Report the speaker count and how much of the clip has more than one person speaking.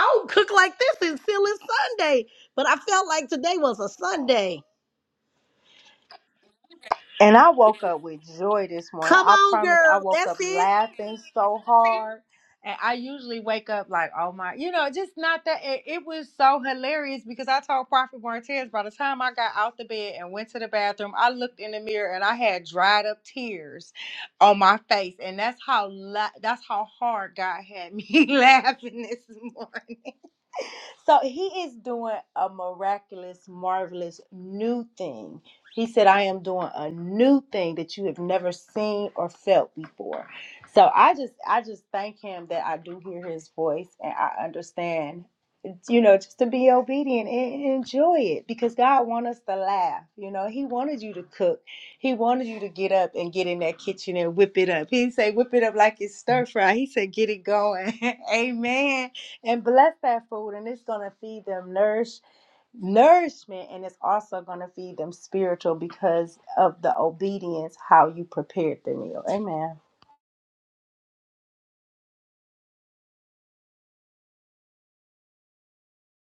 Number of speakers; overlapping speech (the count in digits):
2, about 2%